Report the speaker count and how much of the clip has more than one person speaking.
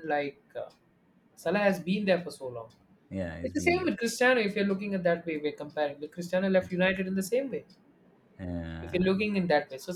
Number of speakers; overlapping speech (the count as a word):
two, about 8%